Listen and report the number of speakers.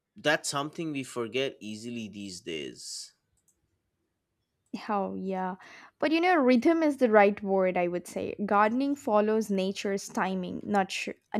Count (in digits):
2